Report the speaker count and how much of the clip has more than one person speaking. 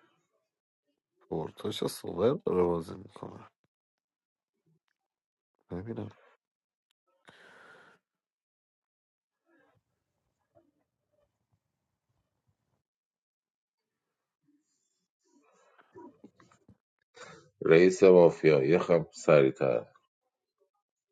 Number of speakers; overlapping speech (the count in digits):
2, no overlap